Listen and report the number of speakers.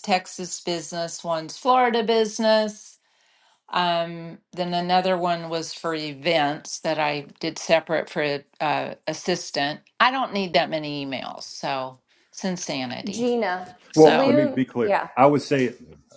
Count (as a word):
three